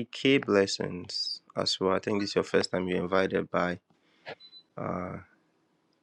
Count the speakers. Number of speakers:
1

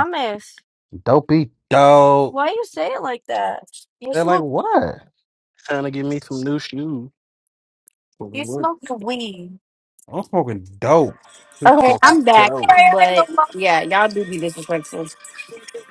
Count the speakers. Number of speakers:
4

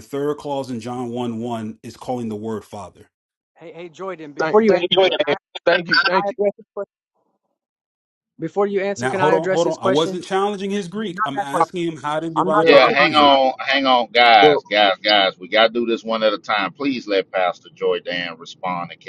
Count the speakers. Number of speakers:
4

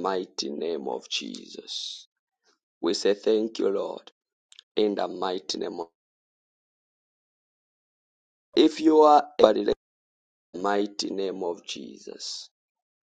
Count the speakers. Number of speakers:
1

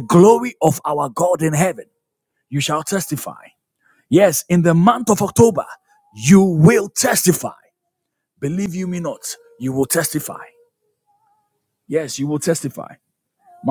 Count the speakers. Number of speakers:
1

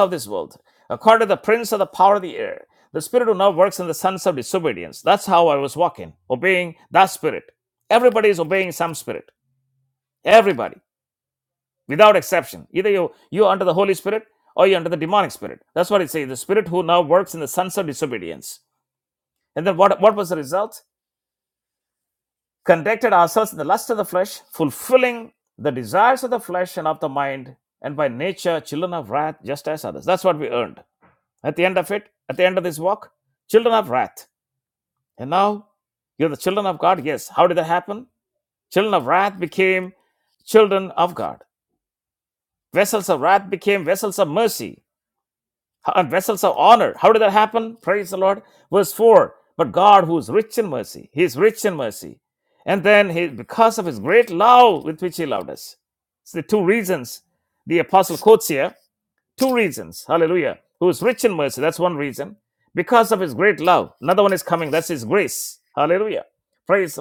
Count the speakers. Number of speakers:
1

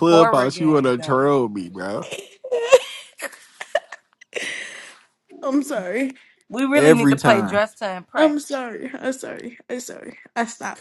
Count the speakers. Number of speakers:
3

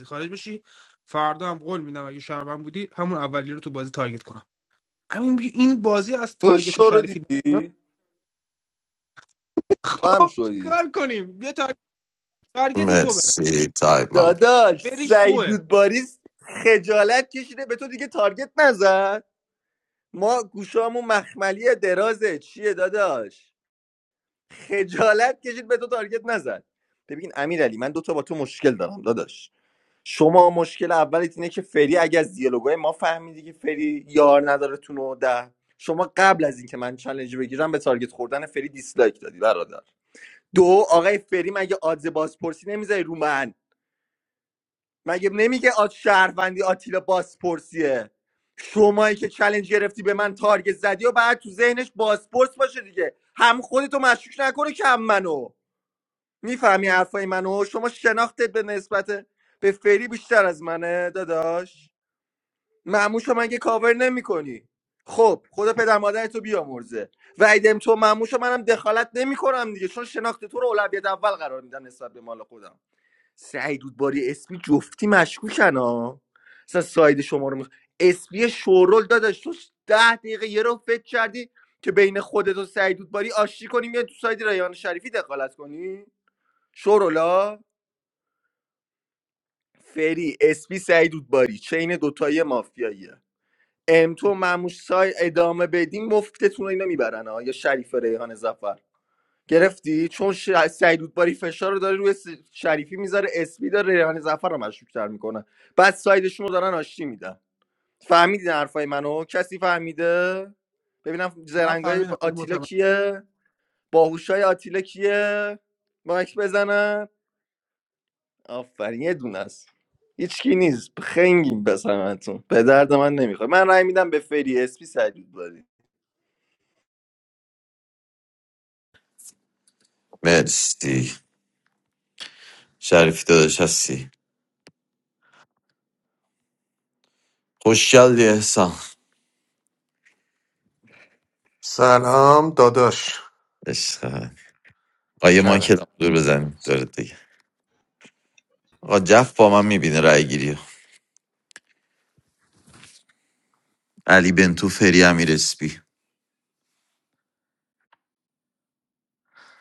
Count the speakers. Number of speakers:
4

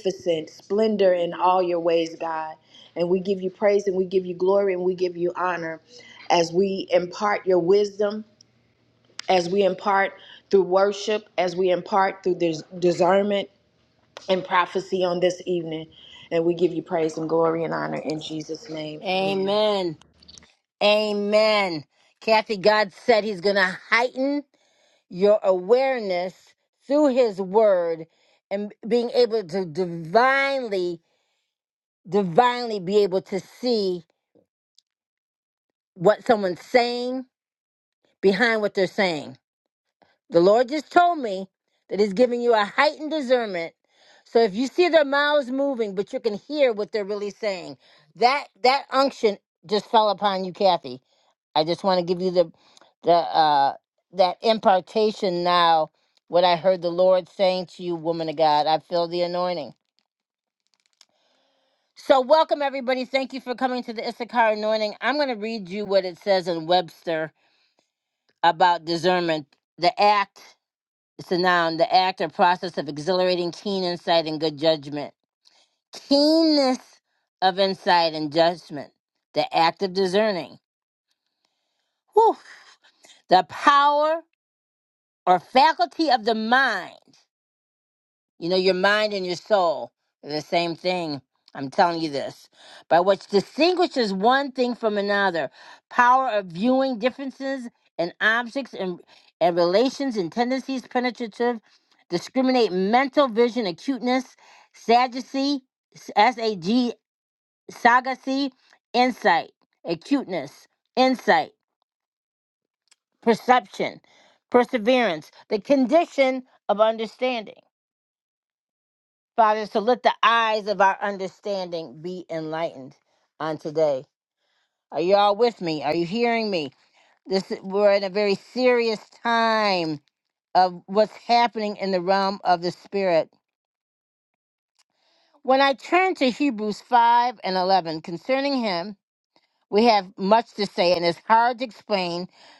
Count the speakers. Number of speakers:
2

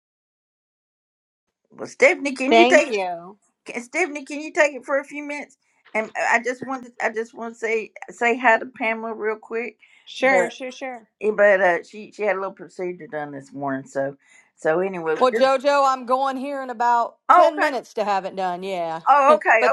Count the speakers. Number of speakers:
3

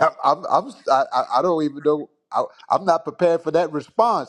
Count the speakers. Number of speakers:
1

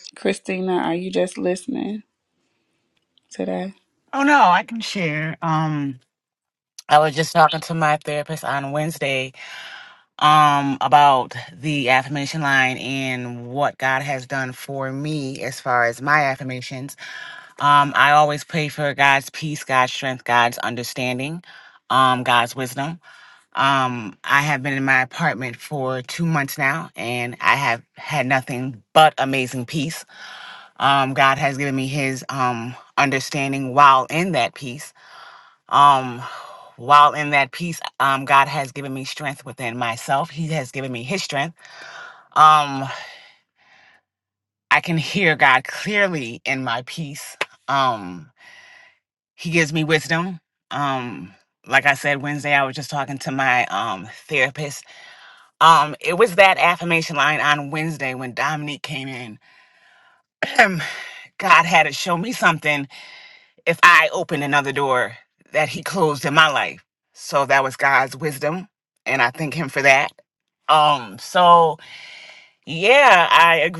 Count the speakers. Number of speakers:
2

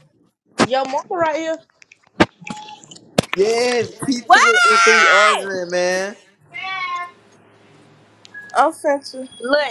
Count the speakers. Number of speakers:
3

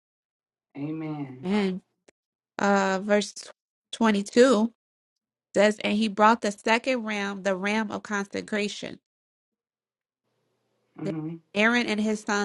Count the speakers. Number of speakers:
2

